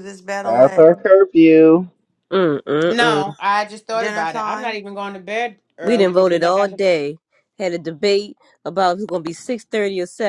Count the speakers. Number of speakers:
four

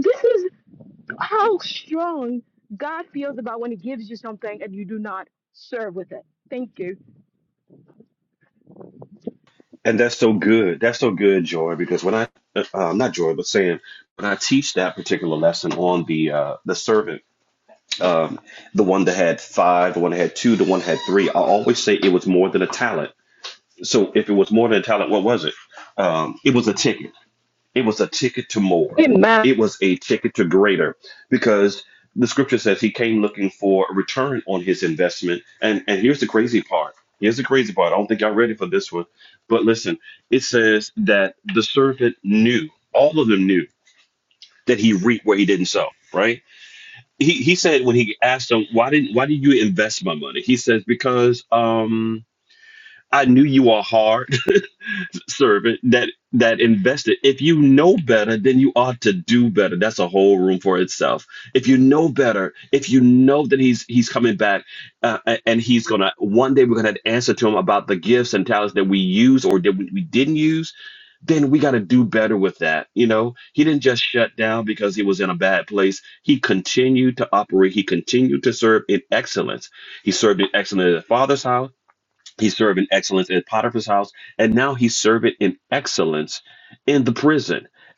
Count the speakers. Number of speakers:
two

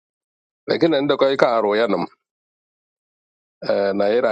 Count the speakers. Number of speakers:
one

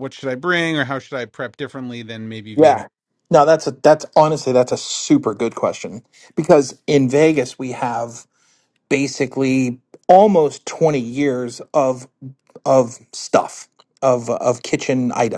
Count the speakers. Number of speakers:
two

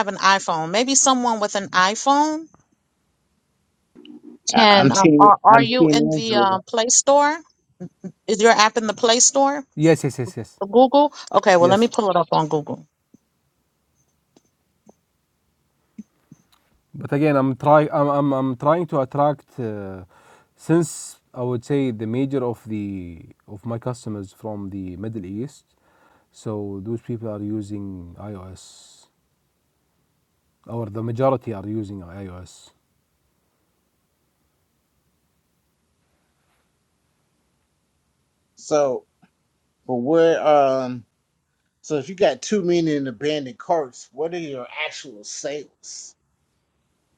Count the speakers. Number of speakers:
three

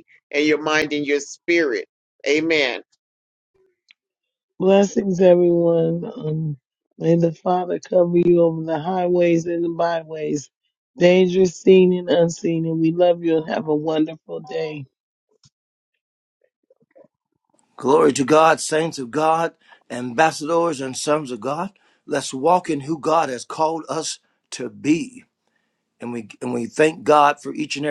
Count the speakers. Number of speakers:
three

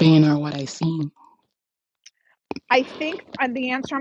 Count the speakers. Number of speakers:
two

